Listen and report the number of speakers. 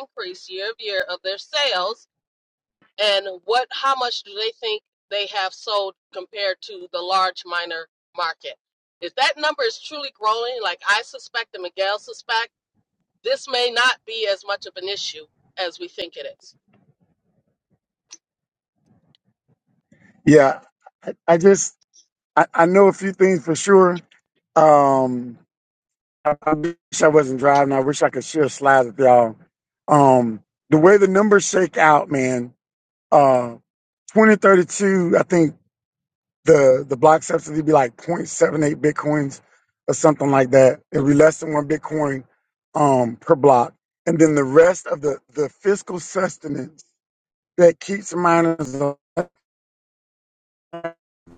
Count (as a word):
two